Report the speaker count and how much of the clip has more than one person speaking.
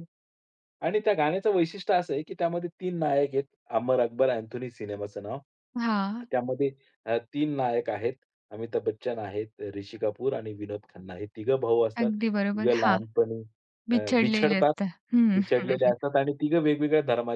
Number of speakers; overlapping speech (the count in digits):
2, about 12%